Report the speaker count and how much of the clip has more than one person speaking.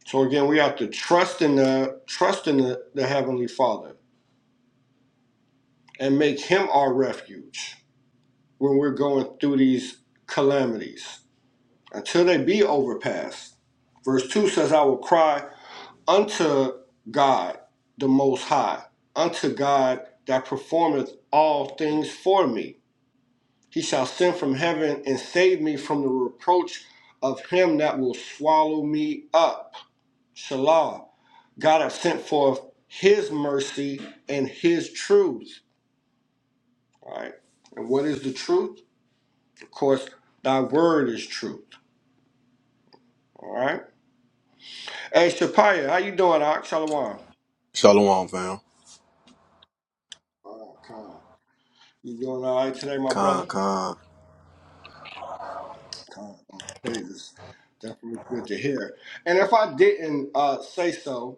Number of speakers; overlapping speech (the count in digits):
2, about 1%